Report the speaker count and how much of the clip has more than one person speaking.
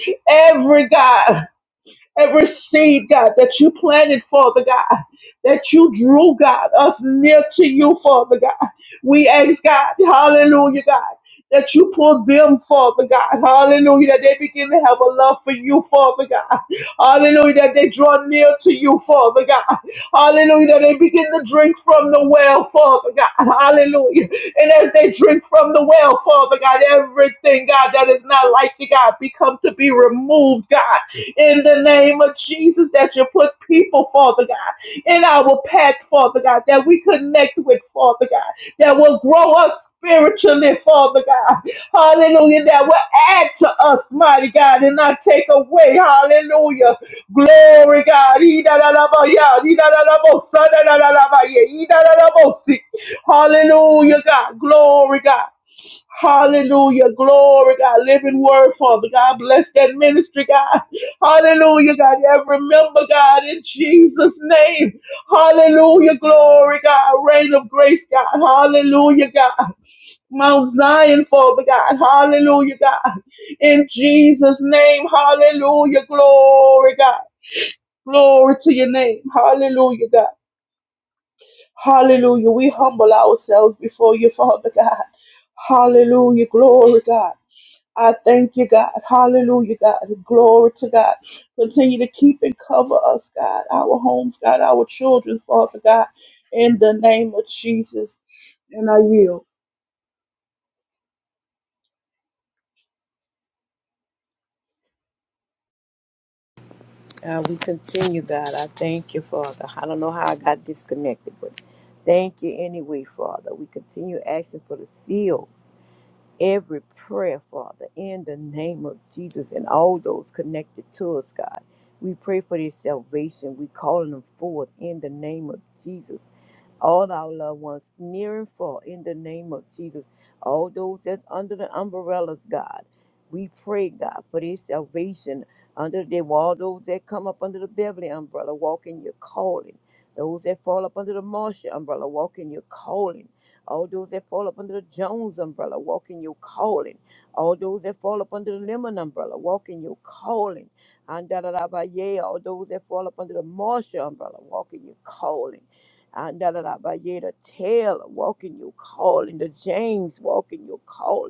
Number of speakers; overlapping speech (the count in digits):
2, no overlap